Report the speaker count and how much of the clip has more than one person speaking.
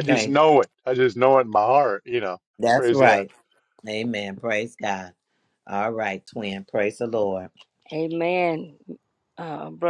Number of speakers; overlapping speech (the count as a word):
three, about 8%